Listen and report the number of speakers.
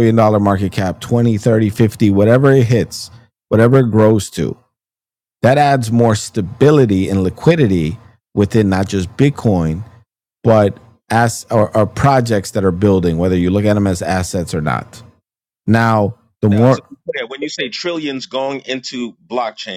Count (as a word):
two